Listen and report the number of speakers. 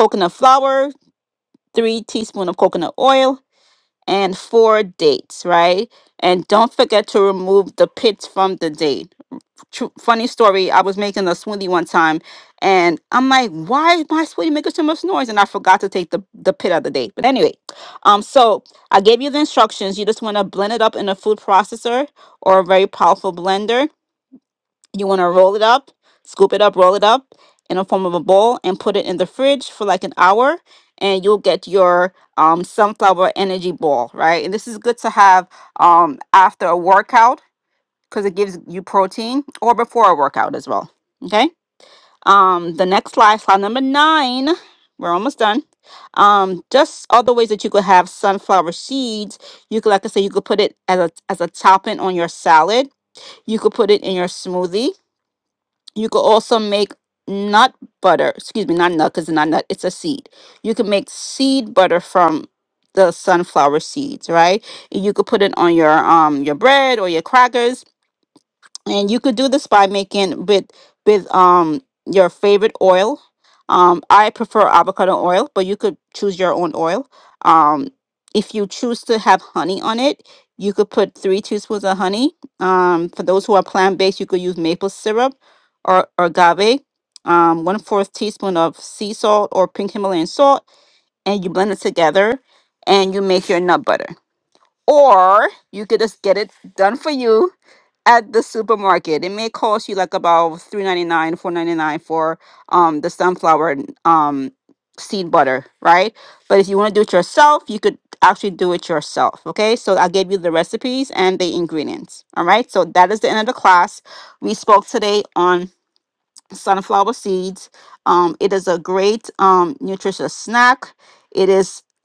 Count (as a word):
one